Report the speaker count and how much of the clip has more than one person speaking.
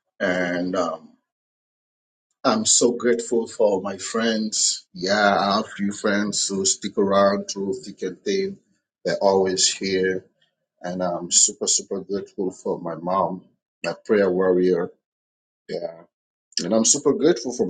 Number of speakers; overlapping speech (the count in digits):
1, no overlap